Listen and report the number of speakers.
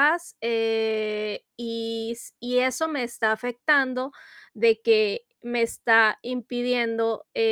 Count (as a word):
one